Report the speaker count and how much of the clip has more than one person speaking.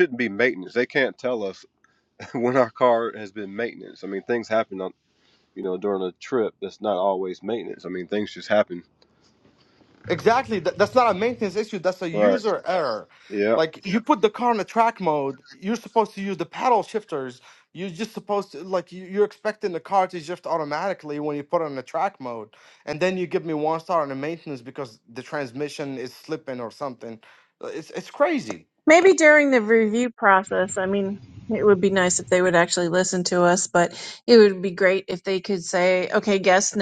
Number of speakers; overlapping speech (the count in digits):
3, about 1%